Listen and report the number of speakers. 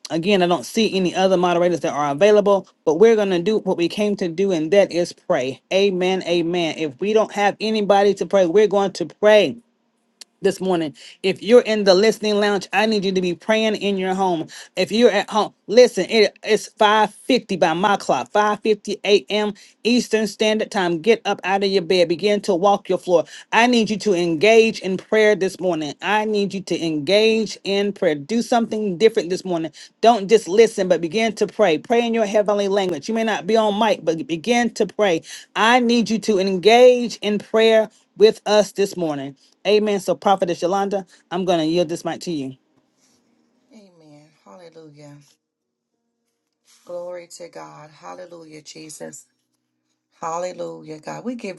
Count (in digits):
2